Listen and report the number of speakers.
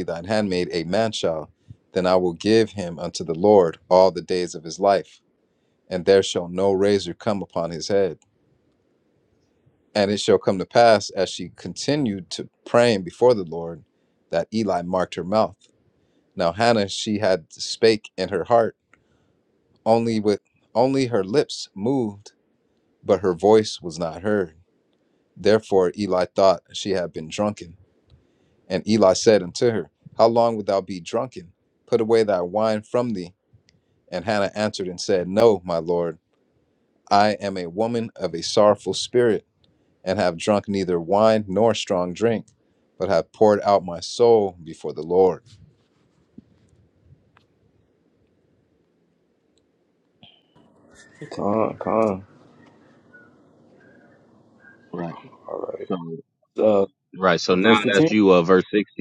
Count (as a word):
three